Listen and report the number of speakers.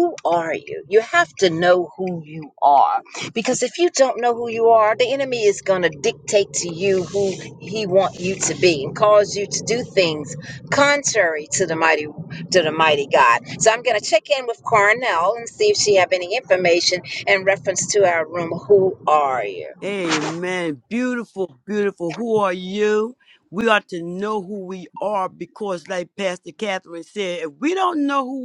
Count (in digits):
2